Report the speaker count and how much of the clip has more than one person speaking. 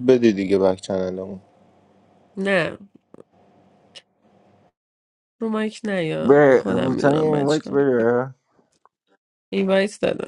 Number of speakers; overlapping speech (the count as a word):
three, about 16%